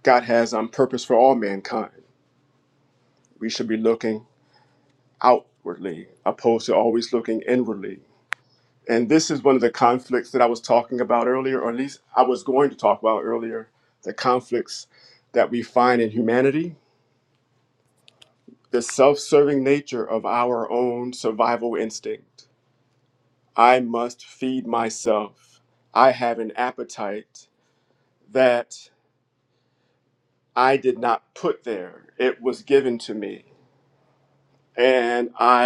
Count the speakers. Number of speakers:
1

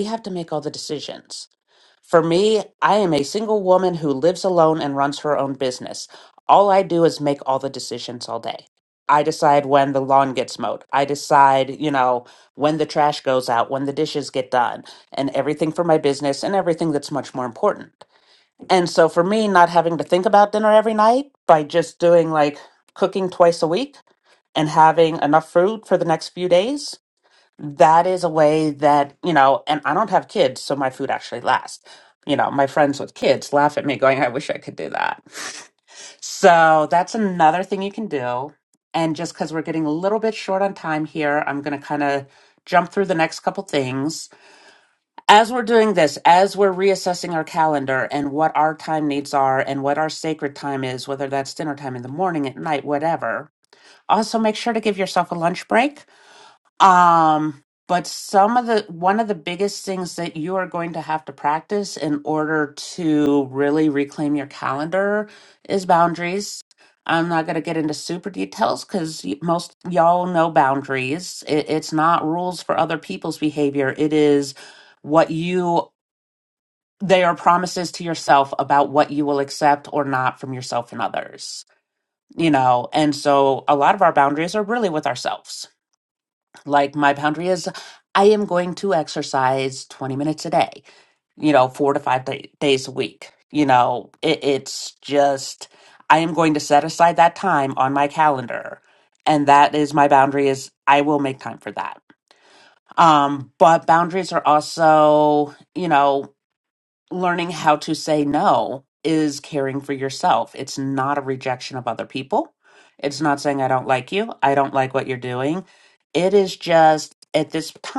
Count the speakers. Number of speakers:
1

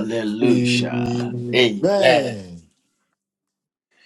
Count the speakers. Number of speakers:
2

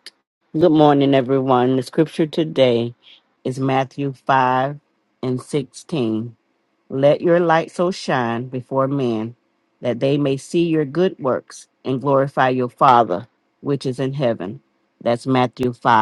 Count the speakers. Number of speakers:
1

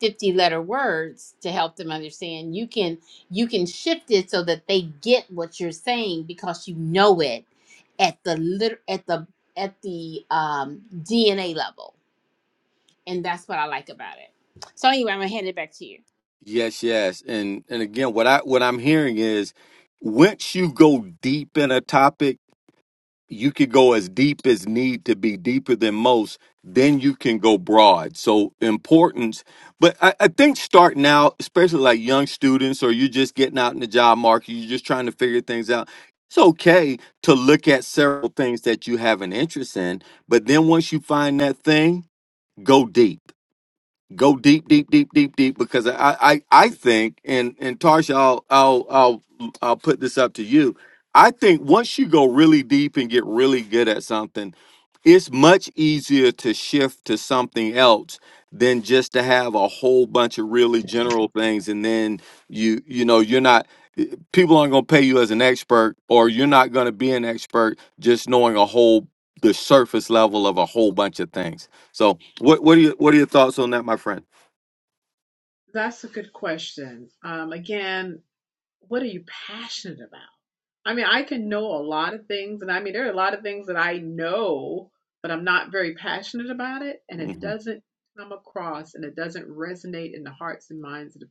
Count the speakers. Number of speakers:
3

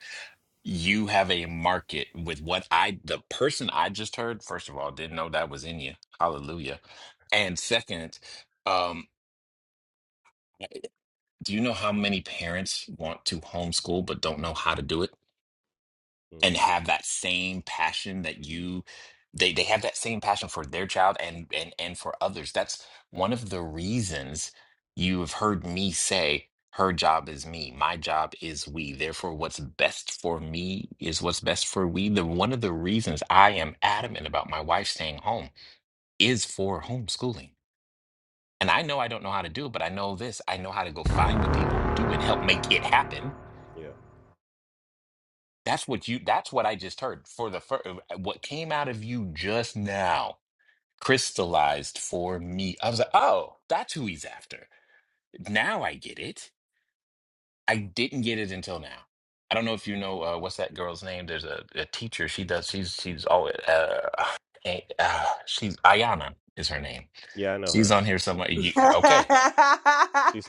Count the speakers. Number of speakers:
3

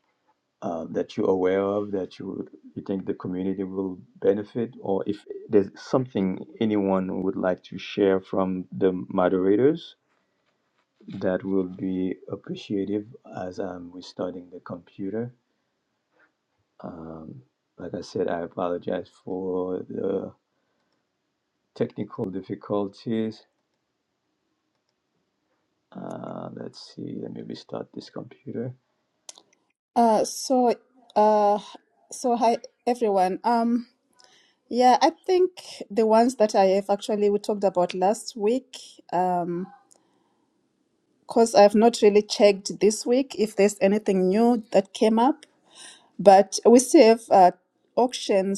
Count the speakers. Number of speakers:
2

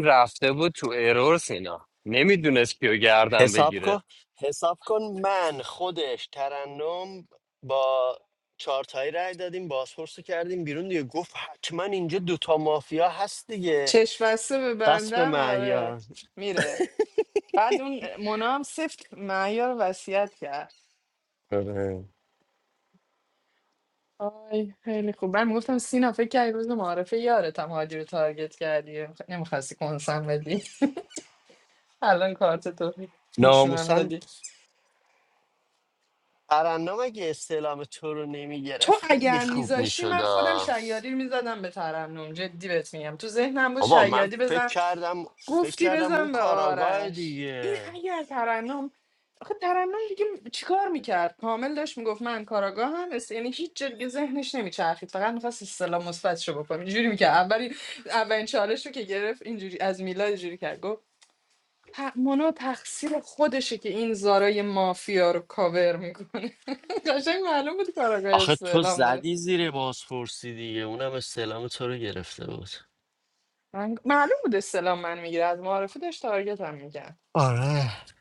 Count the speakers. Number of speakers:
3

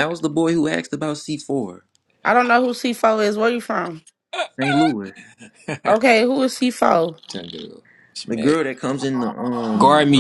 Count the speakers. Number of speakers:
3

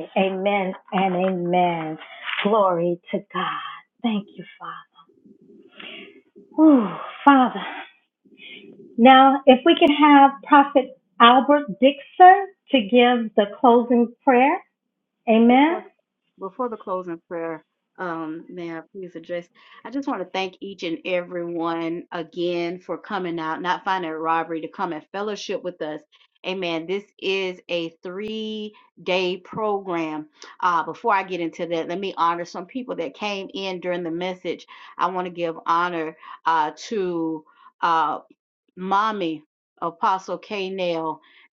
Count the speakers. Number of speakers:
2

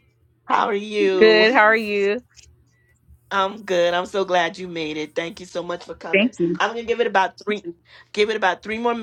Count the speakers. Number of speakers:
2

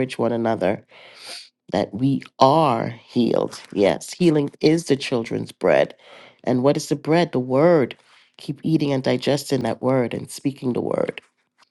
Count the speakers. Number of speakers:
1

